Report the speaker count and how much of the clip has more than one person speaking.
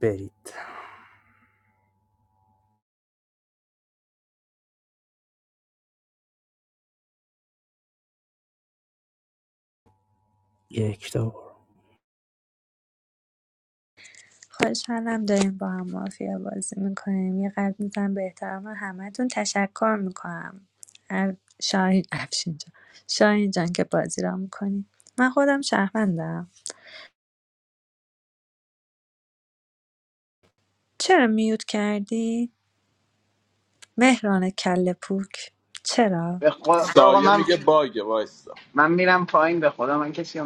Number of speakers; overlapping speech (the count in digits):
4, about 2%